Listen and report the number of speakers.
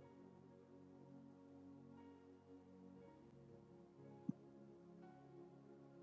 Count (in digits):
0